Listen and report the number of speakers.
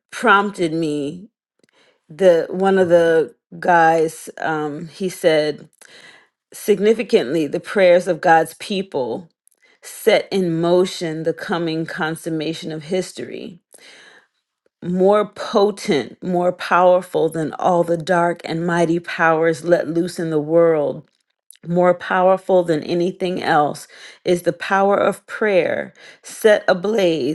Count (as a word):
one